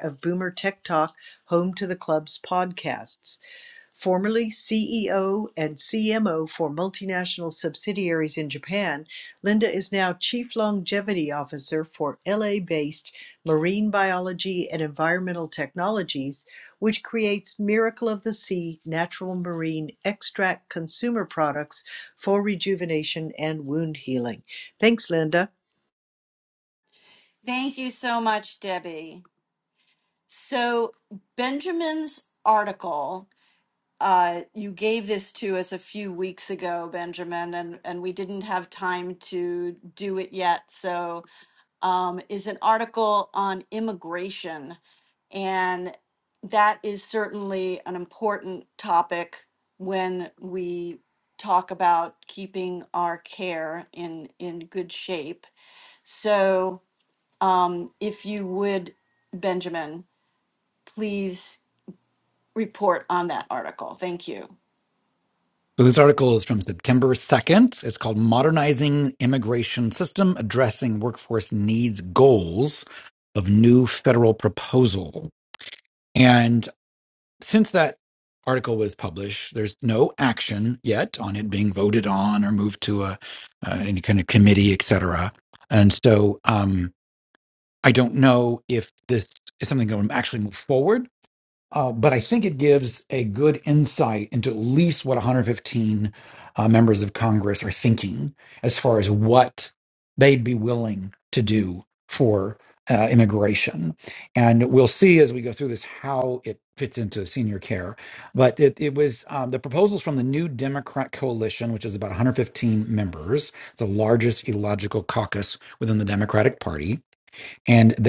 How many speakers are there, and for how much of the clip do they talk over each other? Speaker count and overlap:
3, no overlap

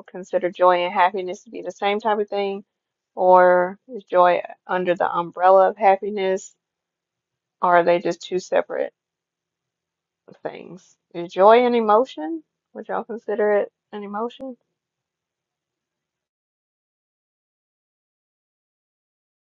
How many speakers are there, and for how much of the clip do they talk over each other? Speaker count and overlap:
1, no overlap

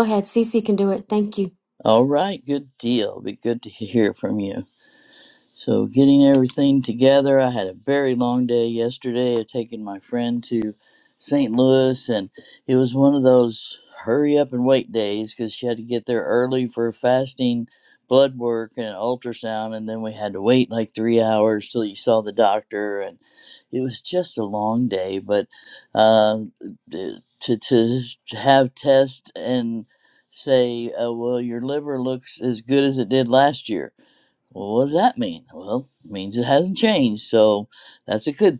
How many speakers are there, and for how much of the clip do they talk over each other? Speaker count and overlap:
2, no overlap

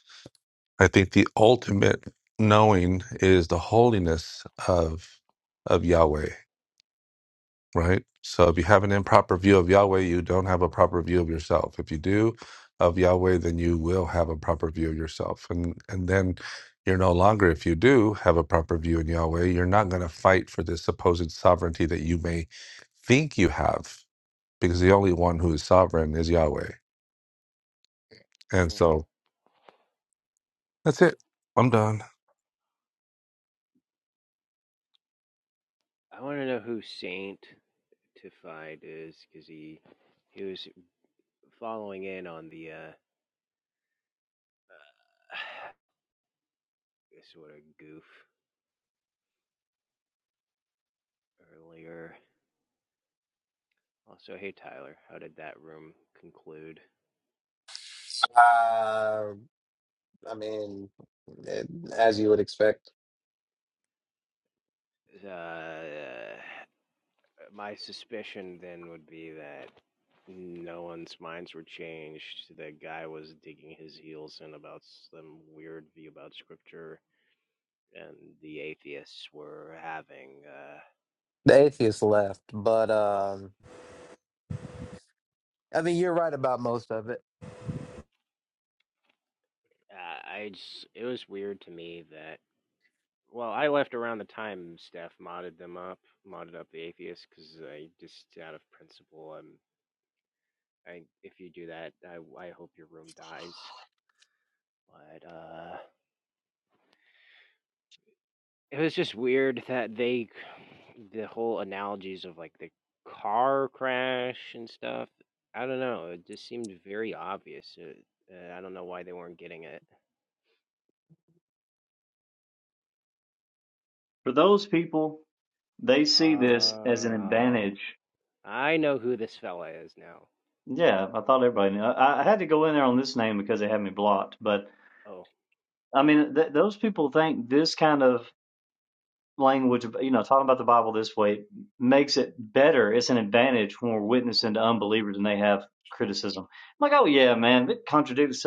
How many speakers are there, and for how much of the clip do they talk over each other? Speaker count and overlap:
4, about 1%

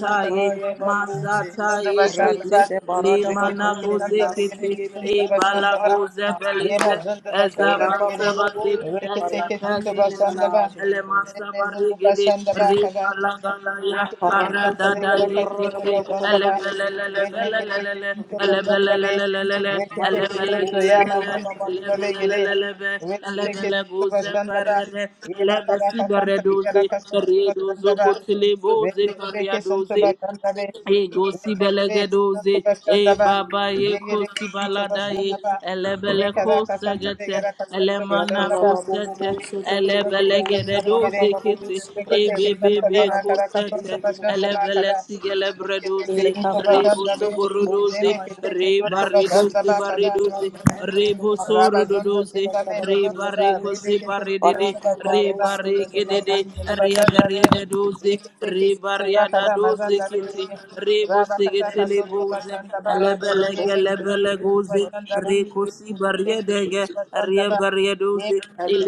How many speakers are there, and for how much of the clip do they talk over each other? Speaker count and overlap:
3, about 80%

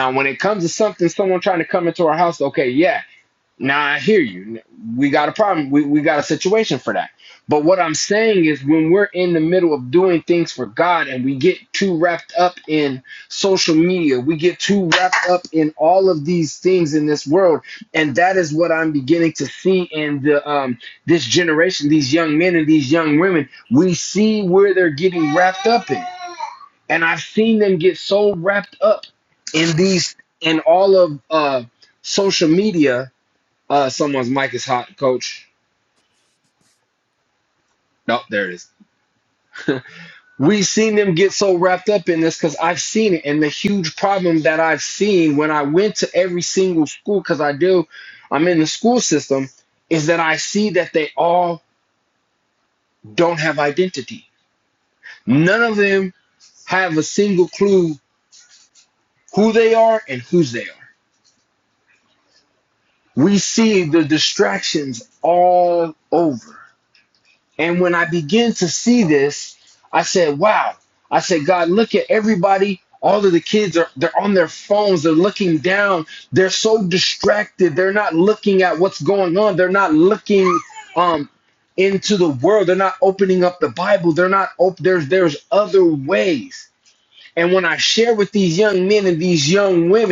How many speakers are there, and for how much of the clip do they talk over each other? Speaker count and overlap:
1, no overlap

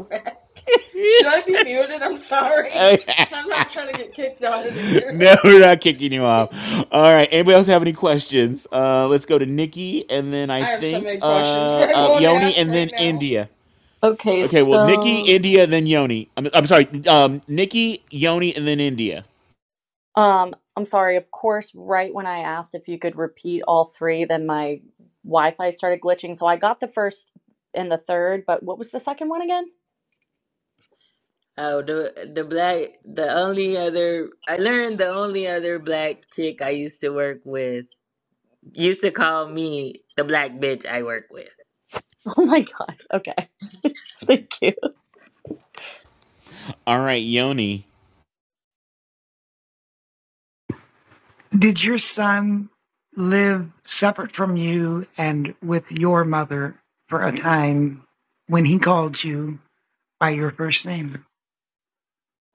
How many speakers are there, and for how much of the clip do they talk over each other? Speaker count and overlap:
5, about 6%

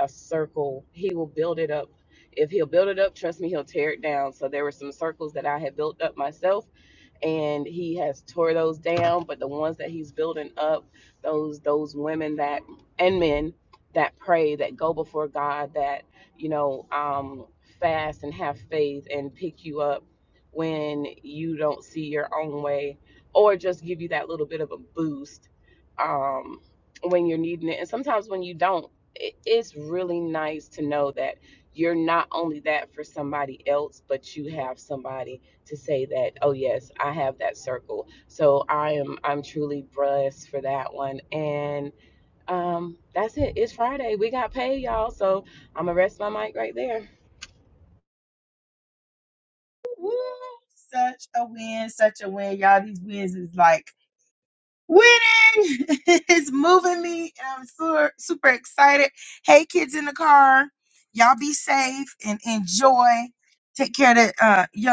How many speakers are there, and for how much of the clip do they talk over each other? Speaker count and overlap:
2, no overlap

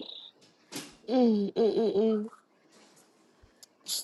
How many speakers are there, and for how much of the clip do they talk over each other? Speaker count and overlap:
1, no overlap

